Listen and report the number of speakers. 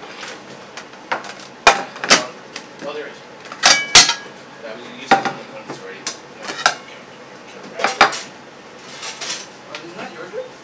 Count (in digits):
2